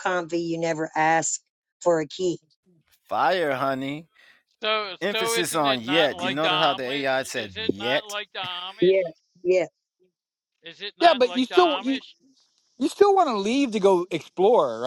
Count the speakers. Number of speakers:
4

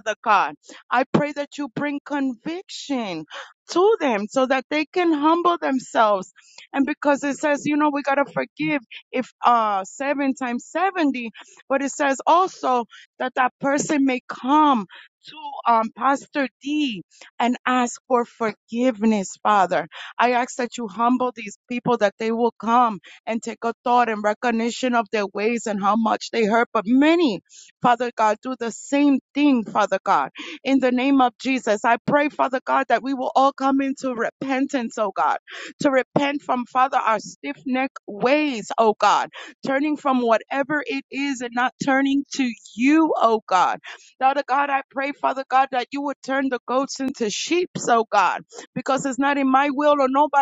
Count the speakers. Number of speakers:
1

